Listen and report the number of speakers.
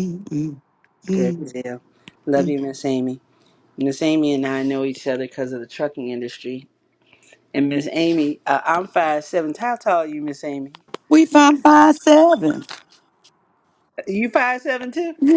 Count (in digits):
2